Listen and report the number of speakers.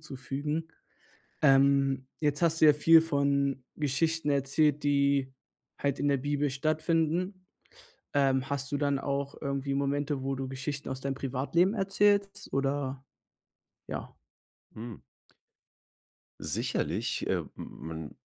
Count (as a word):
two